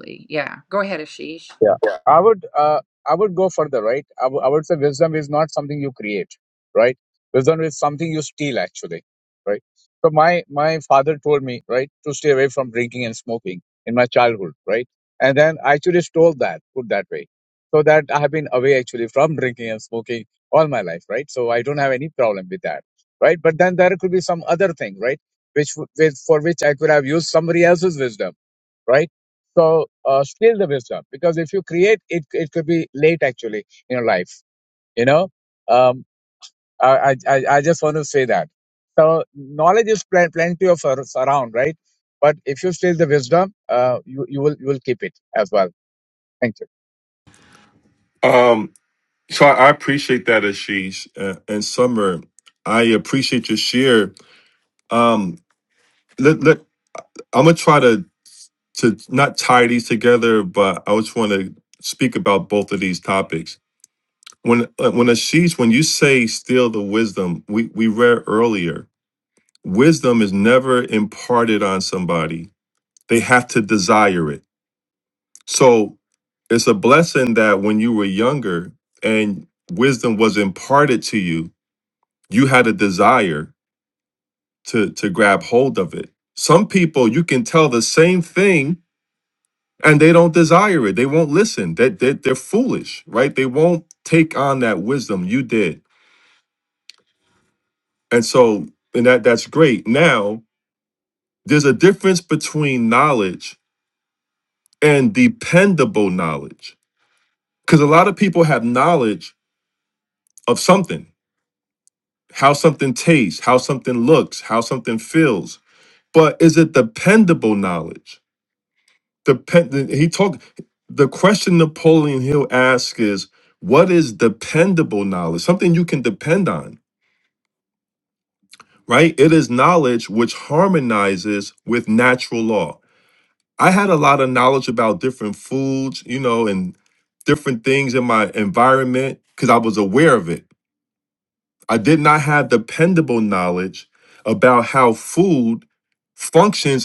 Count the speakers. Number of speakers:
three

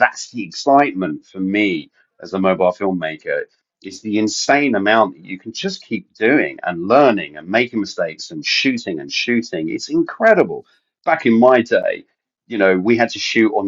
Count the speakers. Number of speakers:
one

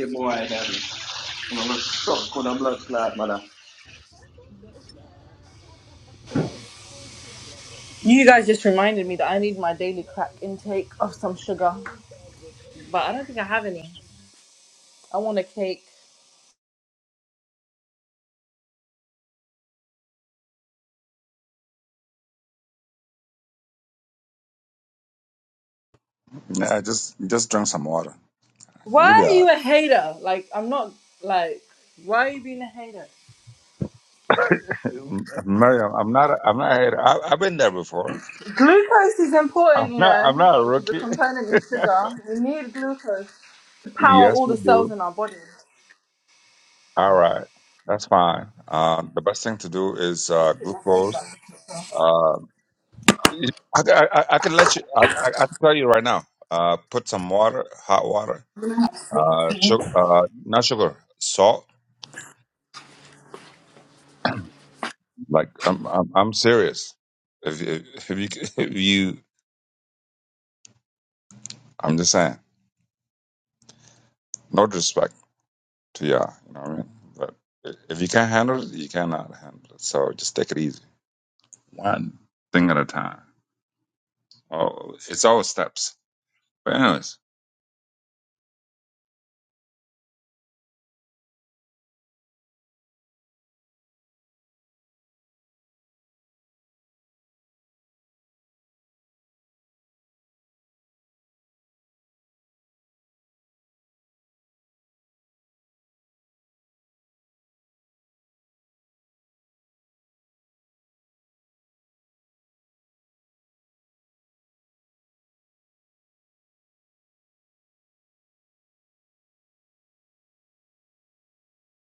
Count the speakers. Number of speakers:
three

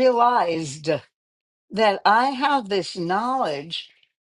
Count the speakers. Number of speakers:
one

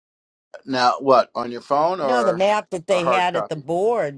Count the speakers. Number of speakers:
two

